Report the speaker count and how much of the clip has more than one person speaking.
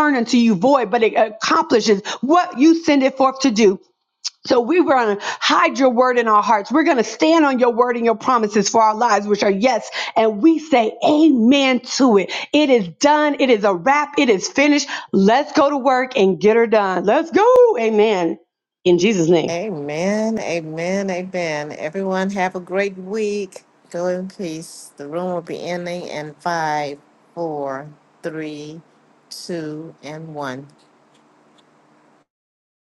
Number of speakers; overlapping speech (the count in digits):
2, under 1%